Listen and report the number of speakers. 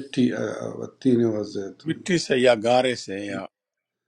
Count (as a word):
two